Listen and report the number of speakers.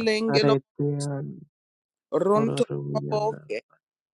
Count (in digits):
2